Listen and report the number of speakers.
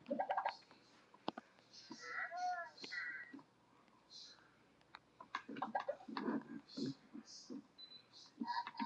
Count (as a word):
zero